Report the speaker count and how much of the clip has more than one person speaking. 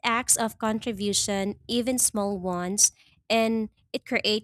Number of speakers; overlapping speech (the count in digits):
1, no overlap